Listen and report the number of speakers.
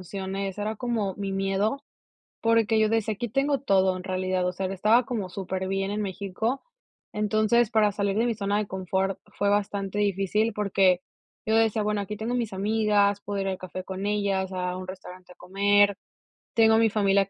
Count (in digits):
1